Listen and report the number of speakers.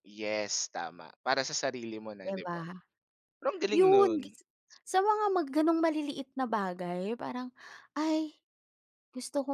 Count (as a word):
two